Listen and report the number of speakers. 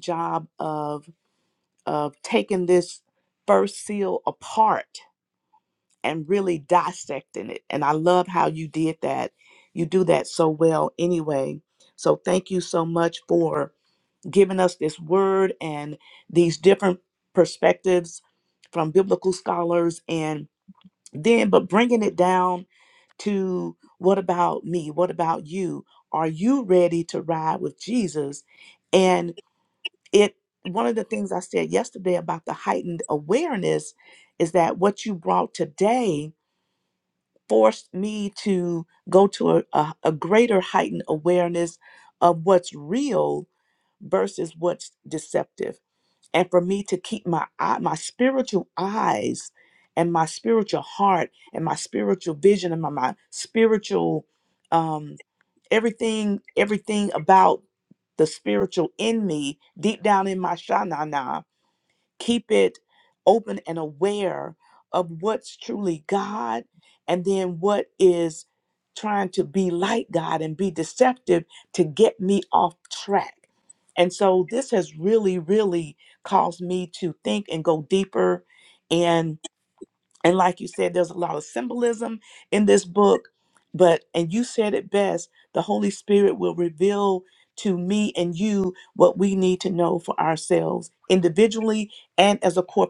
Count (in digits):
1